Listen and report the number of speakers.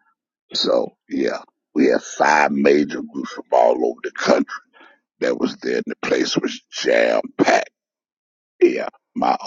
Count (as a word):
one